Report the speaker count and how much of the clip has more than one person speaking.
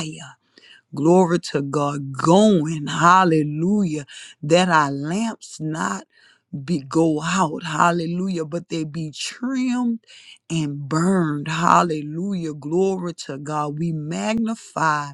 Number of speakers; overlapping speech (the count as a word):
one, no overlap